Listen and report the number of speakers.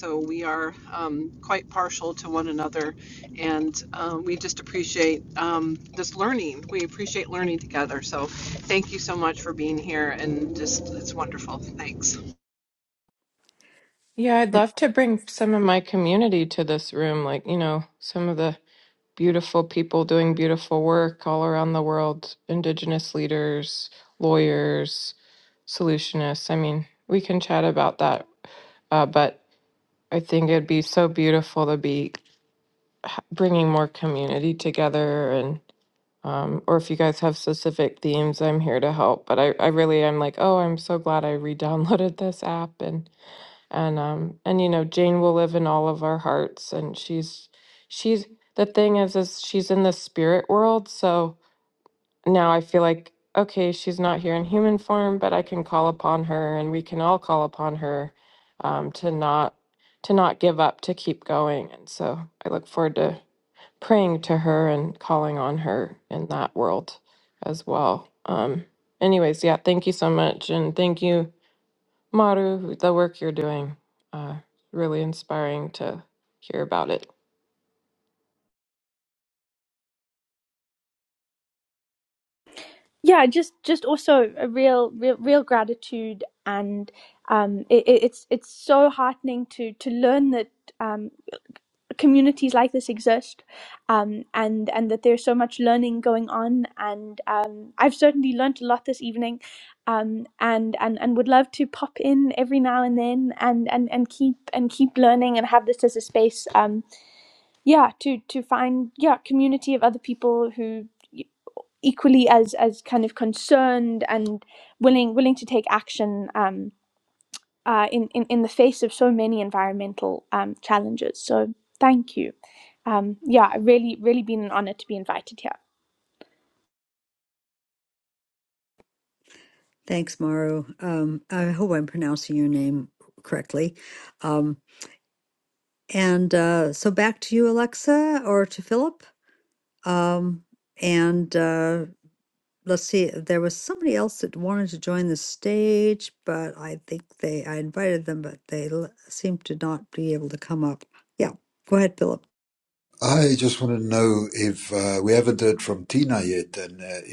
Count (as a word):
five